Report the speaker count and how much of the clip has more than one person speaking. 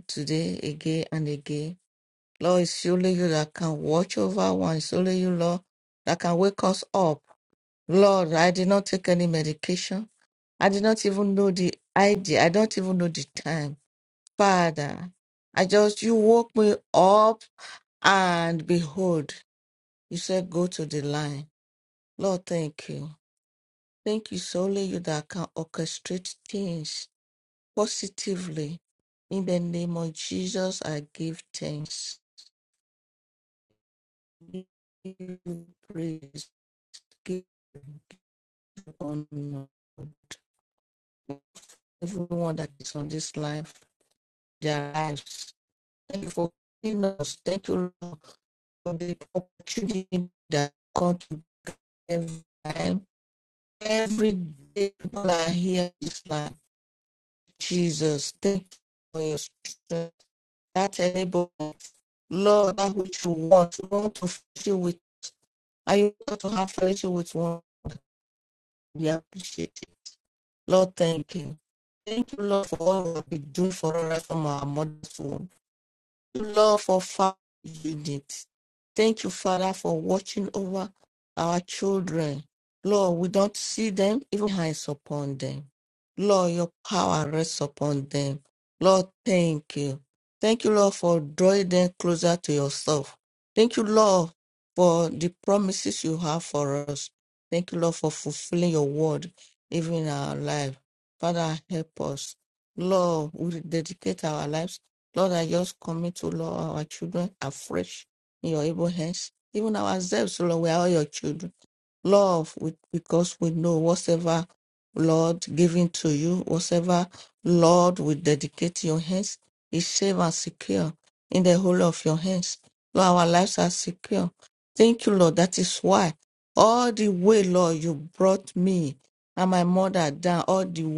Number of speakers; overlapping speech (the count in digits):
1, no overlap